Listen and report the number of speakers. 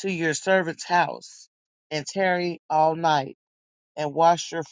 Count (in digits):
1